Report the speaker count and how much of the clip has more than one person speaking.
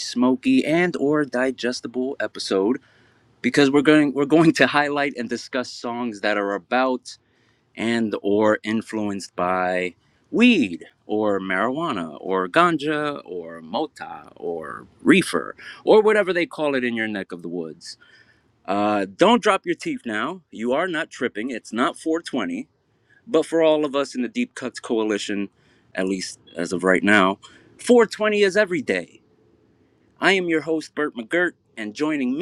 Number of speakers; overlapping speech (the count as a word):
one, no overlap